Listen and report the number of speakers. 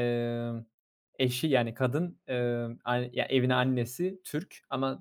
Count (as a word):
one